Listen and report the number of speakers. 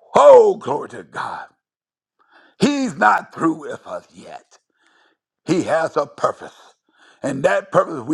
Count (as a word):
one